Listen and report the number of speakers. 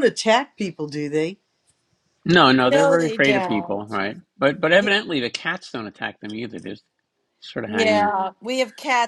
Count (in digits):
3